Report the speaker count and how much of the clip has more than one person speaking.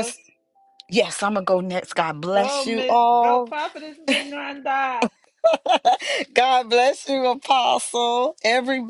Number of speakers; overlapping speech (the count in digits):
2, about 15%